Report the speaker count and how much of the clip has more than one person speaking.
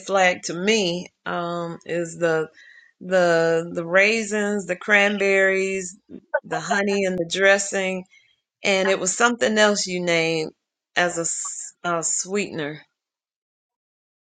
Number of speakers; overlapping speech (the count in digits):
1, no overlap